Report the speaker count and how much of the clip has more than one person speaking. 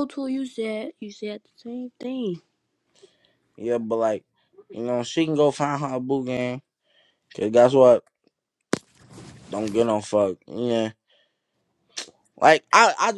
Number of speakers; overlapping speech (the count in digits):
2, no overlap